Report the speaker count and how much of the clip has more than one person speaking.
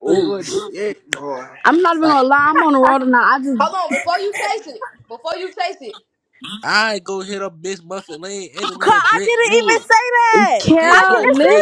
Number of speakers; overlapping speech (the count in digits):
5, about 25%